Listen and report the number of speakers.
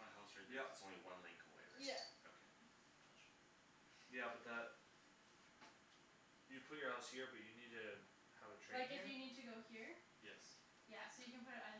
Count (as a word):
three